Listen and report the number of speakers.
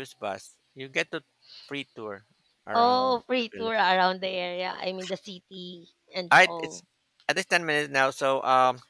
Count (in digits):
2